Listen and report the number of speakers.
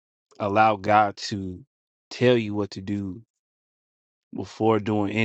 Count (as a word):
one